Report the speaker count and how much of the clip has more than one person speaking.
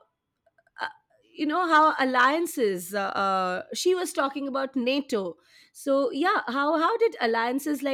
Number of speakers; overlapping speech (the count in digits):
1, no overlap